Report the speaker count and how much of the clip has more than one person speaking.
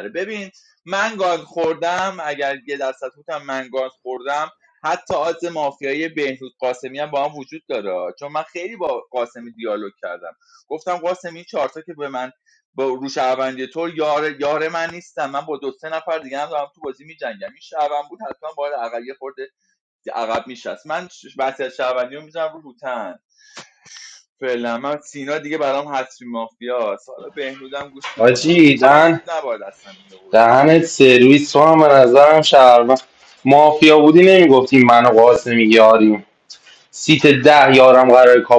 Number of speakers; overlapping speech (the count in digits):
2, about 3%